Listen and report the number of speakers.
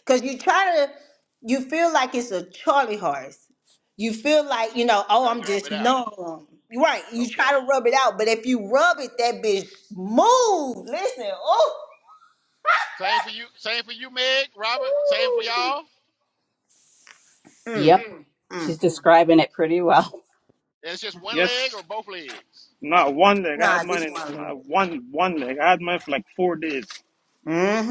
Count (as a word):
four